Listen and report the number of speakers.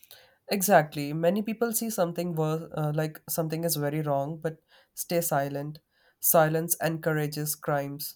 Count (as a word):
one